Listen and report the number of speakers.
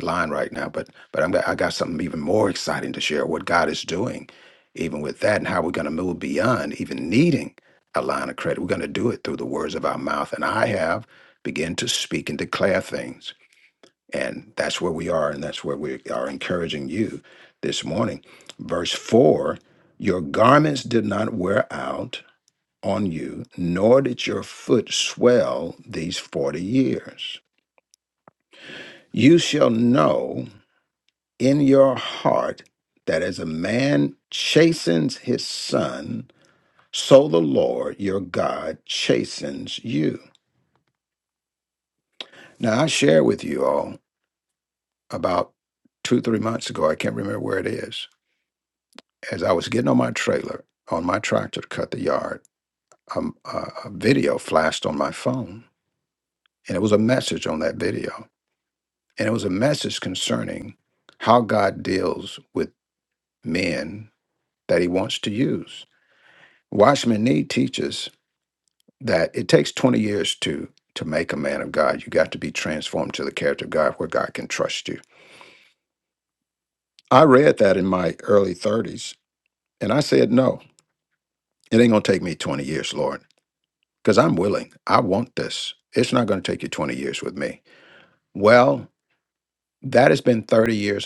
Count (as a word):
one